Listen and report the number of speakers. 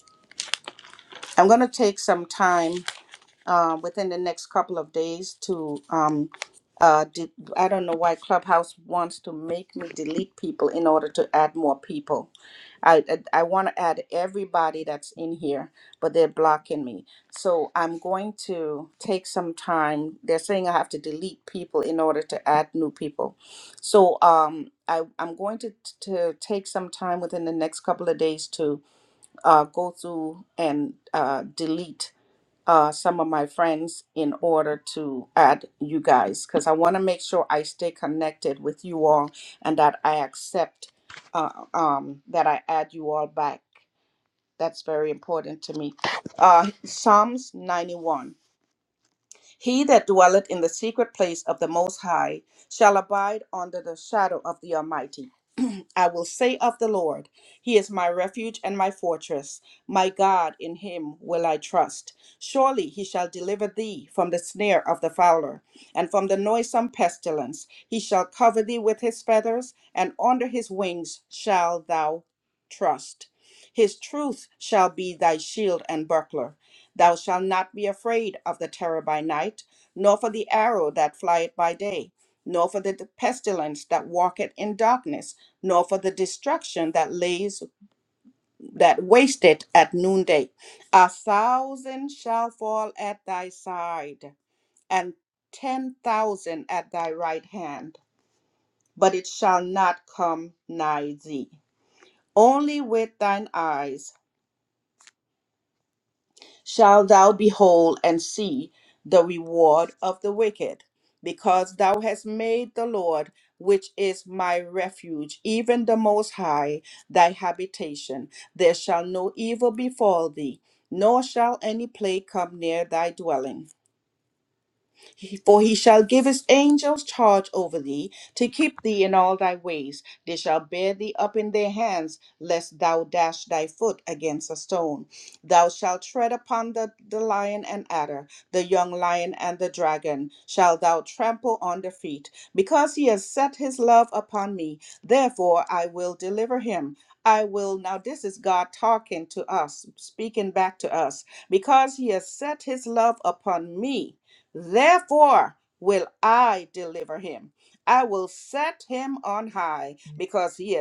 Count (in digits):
1